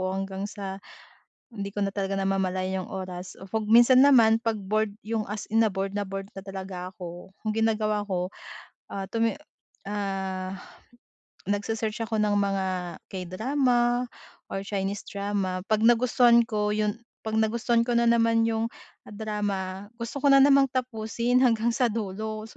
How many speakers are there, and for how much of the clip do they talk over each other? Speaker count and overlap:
1, no overlap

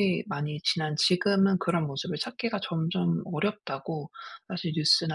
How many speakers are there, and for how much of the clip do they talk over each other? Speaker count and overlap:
1, no overlap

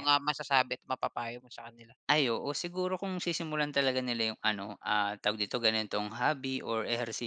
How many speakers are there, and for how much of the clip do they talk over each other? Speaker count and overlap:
2, about 1%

